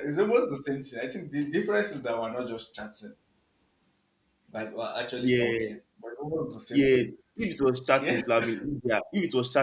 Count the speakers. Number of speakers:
2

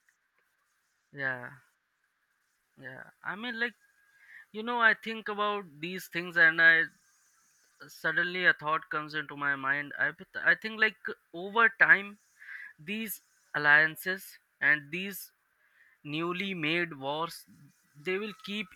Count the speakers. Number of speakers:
1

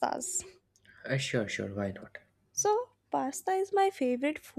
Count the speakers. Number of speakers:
2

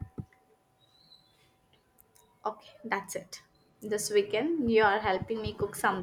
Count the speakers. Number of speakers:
1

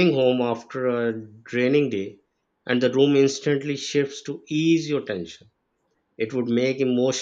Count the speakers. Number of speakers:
1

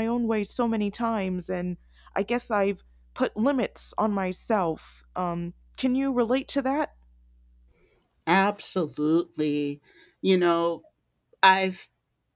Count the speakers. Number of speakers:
2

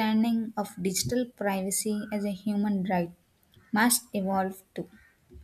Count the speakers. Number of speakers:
1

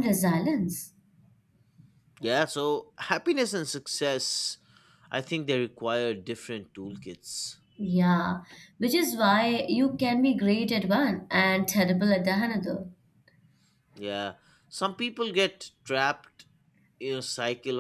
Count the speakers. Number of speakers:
2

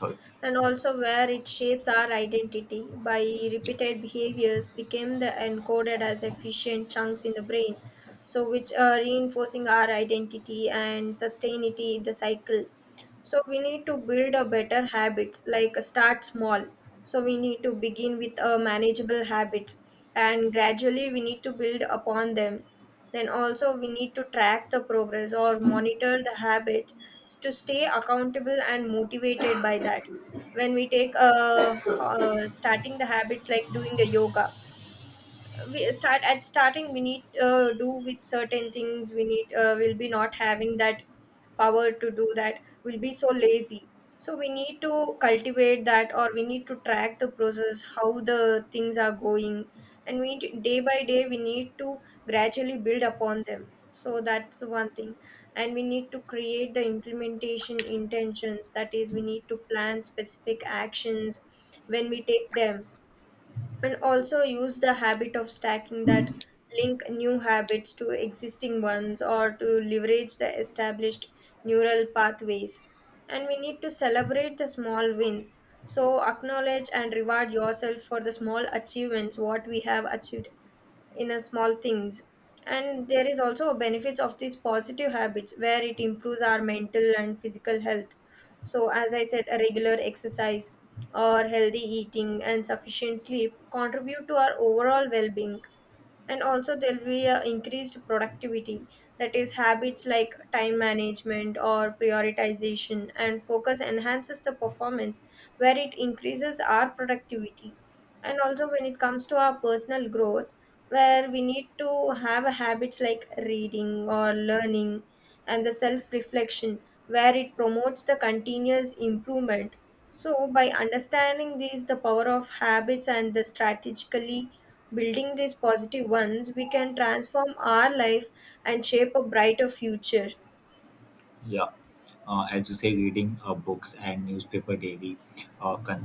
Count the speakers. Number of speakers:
2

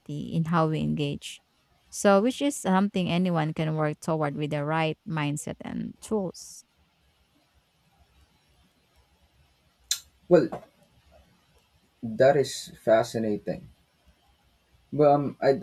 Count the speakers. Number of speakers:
2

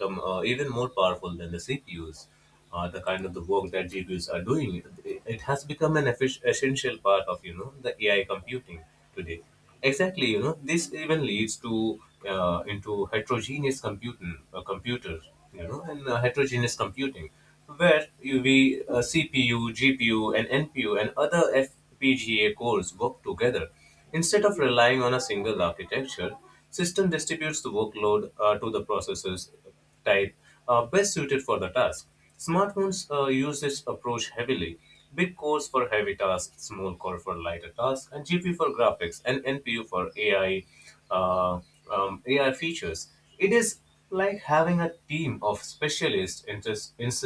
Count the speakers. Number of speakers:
1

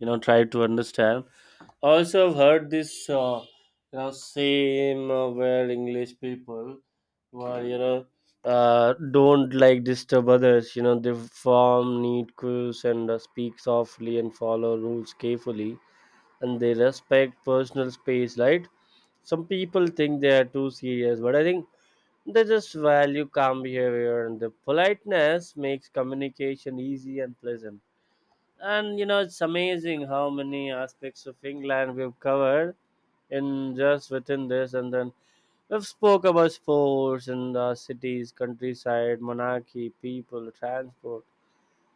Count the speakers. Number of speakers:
1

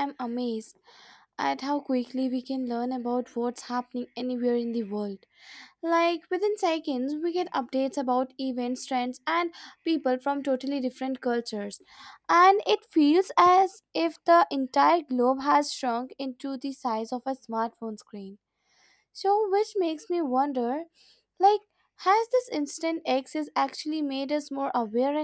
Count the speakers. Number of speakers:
1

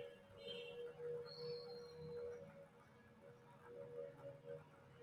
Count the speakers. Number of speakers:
0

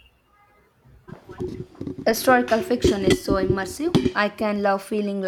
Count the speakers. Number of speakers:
1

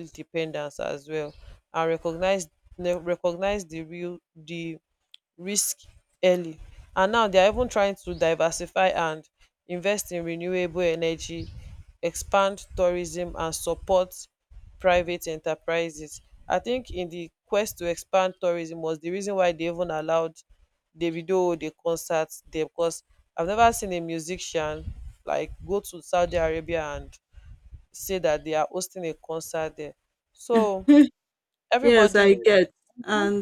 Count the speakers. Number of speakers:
2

